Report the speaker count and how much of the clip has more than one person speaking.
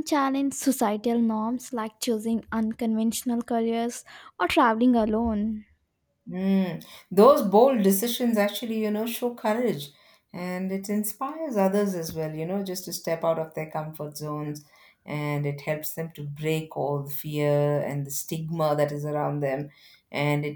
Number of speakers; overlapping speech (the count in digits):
2, no overlap